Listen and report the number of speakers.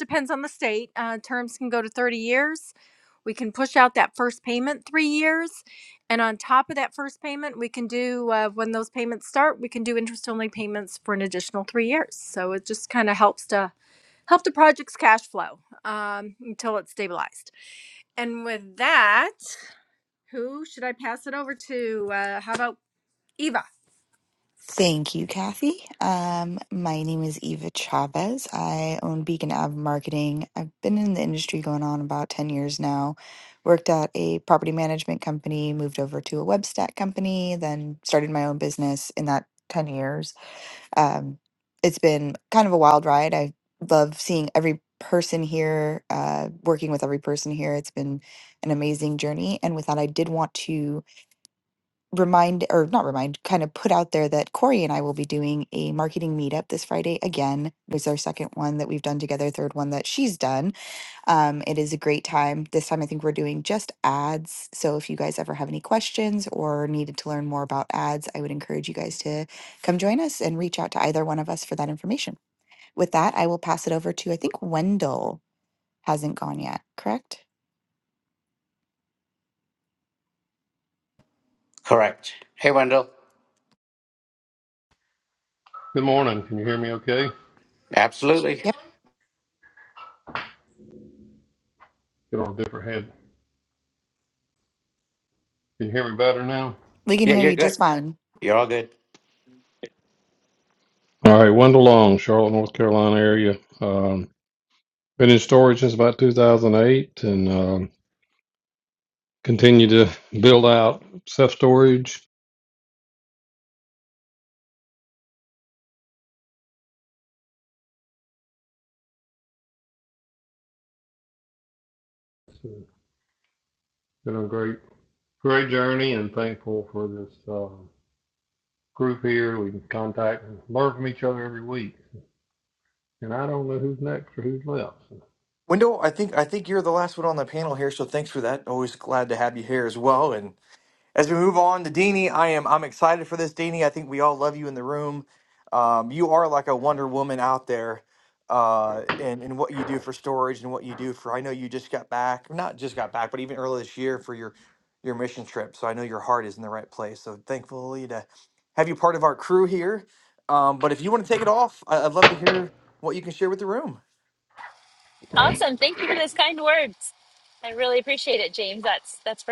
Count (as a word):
six